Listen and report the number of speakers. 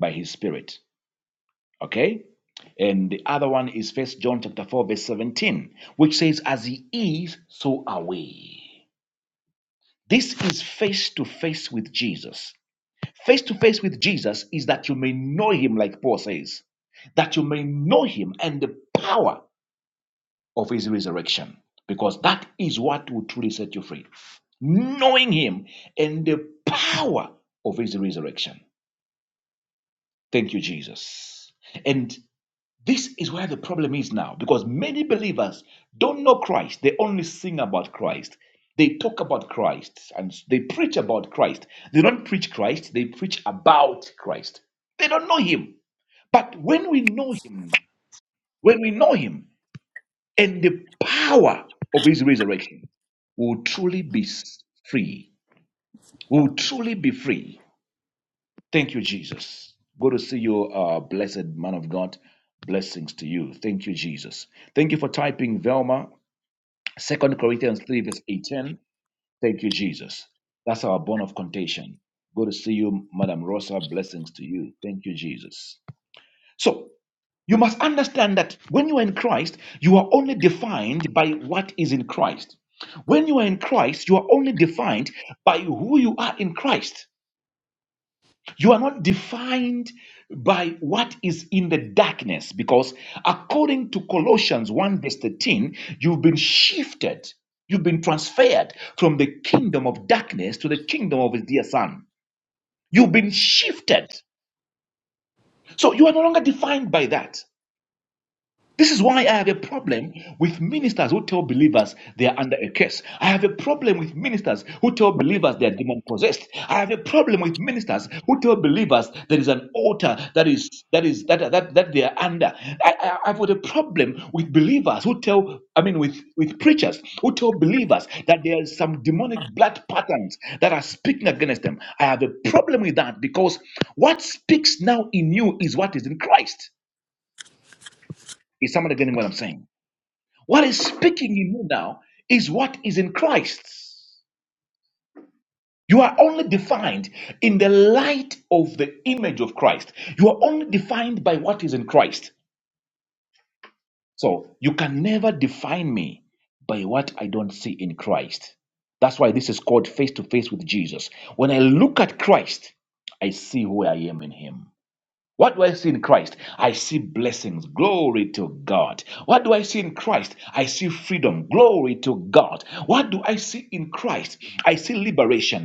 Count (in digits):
1